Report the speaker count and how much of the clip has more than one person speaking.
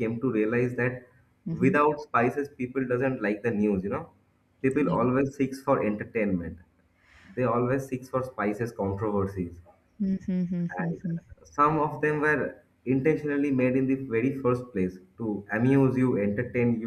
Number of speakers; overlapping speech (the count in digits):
2, about 4%